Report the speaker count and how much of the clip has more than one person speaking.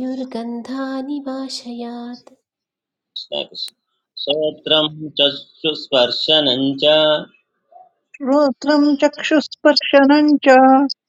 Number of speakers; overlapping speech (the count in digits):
3, no overlap